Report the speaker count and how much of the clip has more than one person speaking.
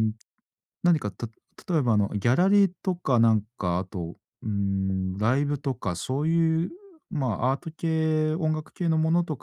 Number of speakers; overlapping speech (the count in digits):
1, no overlap